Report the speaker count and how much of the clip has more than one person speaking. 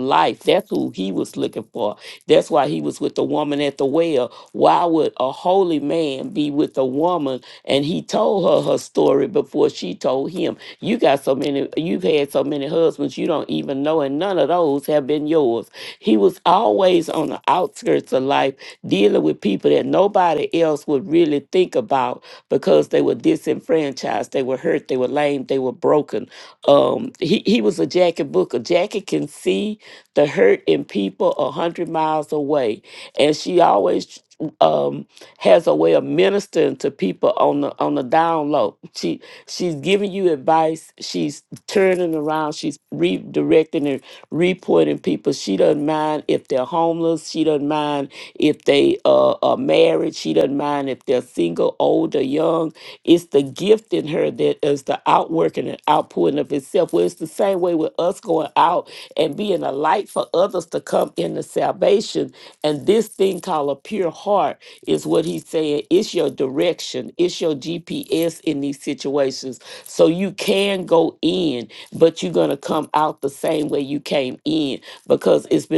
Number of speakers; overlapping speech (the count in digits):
1, no overlap